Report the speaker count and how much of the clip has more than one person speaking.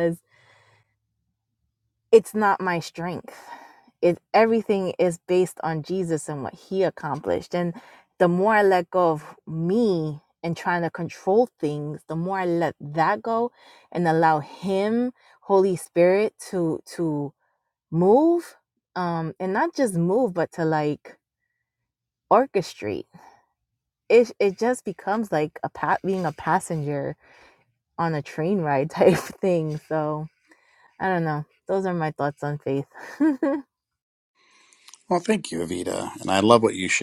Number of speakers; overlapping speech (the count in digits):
2, no overlap